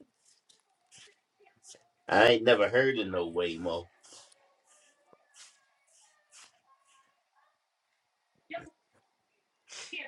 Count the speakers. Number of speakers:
1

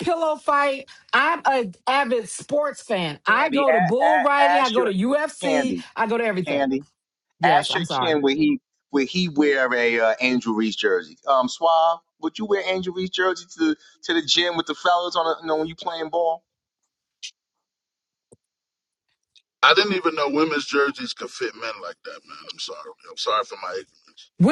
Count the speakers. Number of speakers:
3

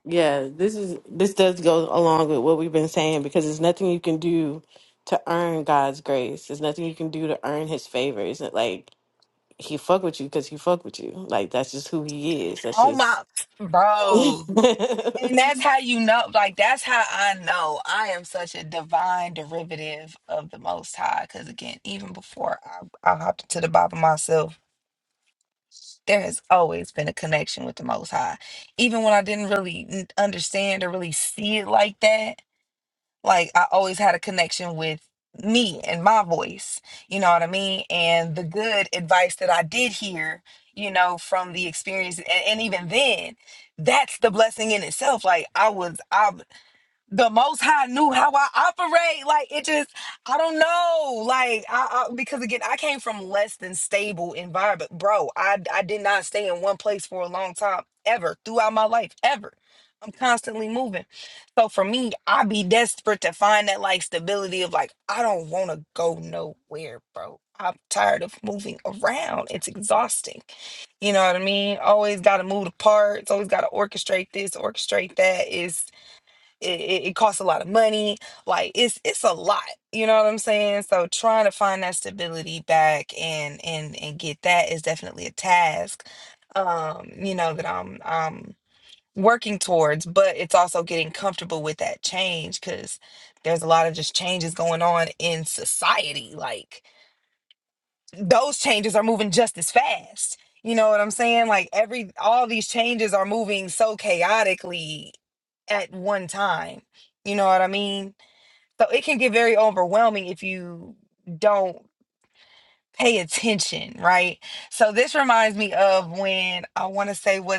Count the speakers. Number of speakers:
2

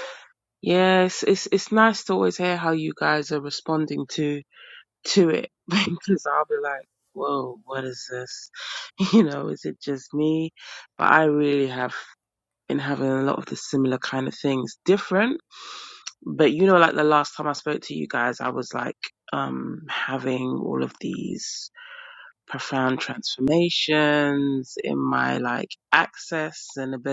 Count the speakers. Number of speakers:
1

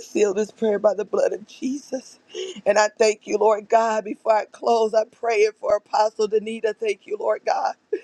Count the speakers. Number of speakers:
1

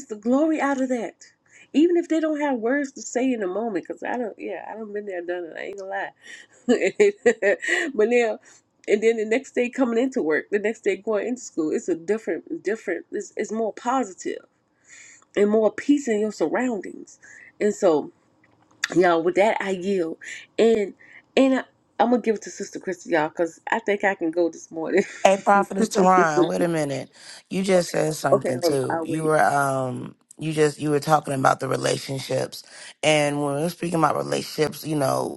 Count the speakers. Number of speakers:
2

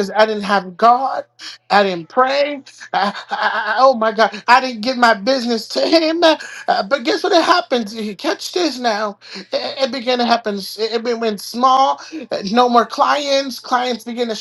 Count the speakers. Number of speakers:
1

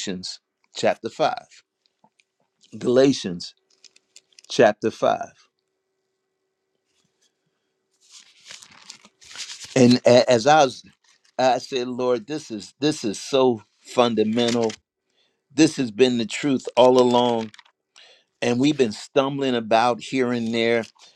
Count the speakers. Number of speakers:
1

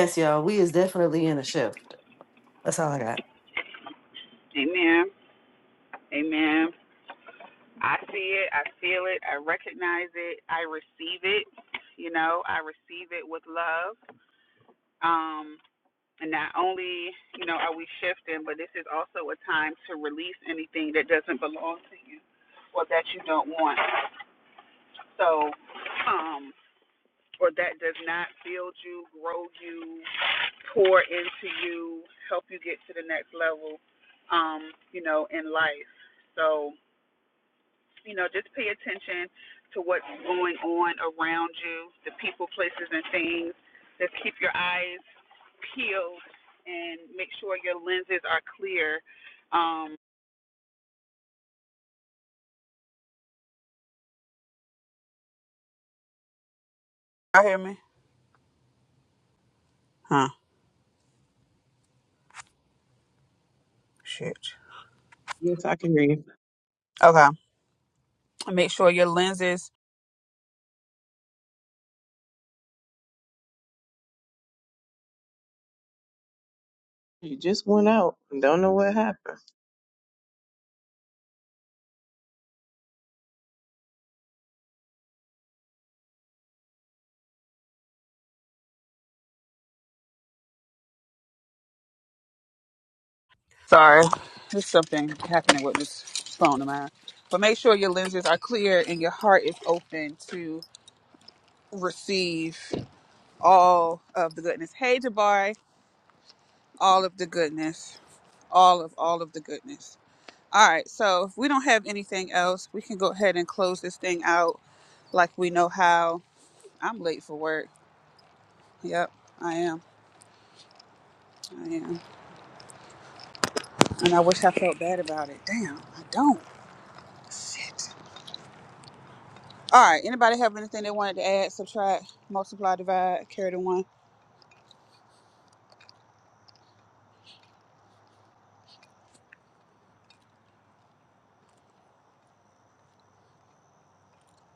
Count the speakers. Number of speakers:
3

